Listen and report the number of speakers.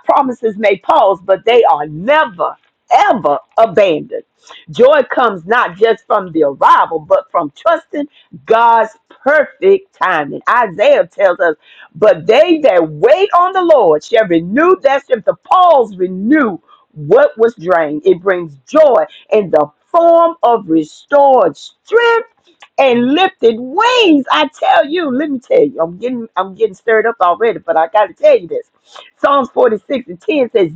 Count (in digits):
1